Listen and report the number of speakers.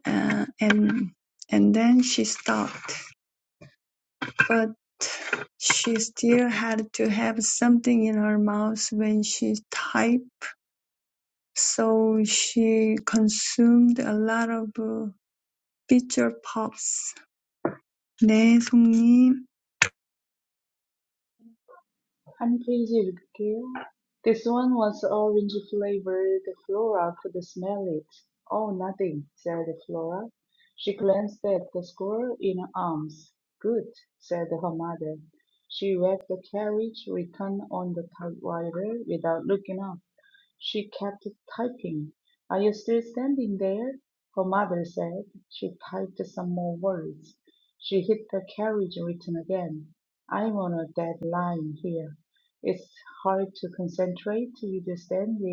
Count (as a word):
two